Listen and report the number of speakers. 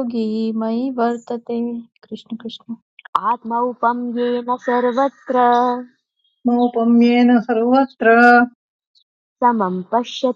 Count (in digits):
3